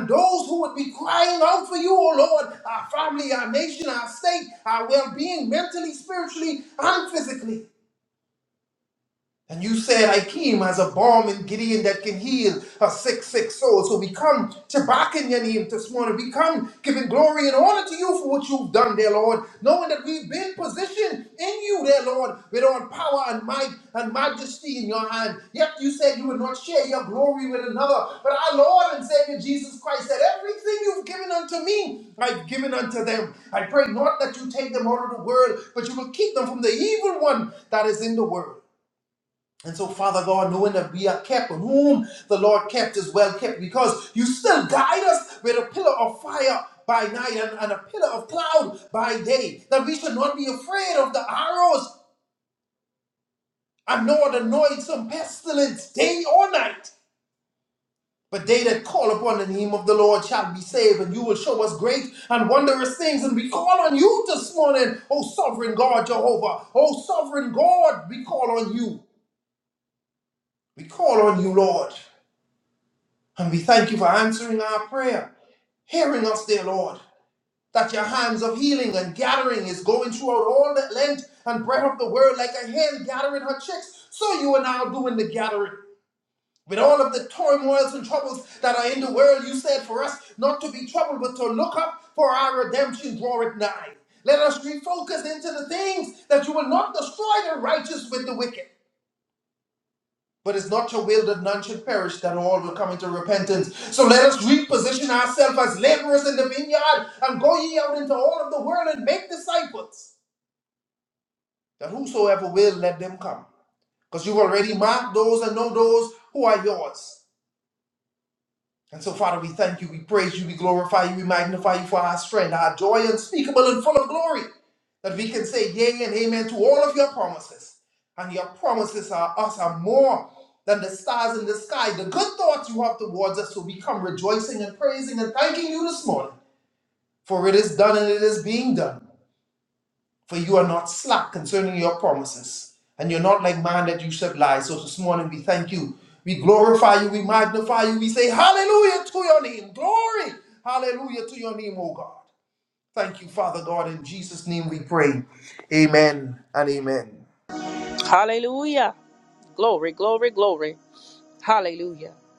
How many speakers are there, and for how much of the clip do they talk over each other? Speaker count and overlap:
2, no overlap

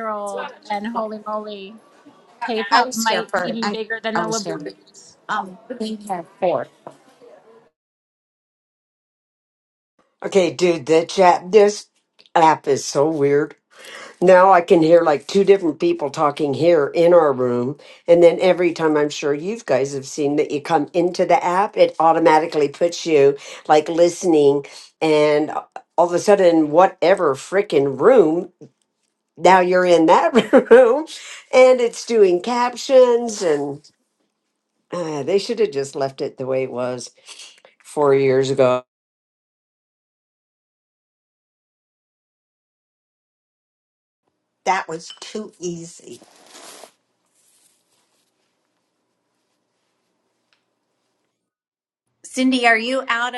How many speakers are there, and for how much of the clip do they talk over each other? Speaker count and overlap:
5, about 3%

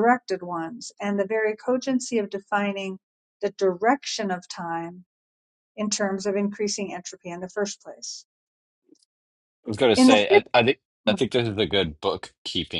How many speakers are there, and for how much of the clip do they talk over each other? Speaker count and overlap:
2, about 3%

